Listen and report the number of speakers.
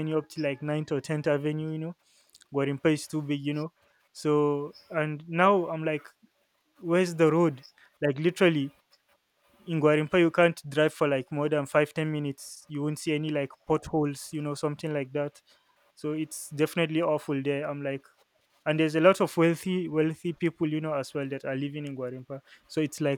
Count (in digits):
1